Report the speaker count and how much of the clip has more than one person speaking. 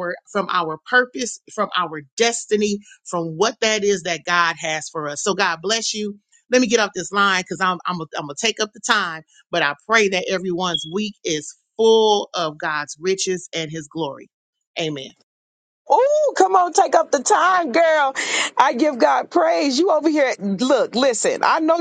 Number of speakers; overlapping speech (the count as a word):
two, no overlap